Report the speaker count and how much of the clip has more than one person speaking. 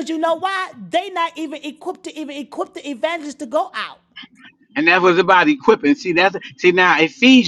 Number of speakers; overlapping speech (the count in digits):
2, no overlap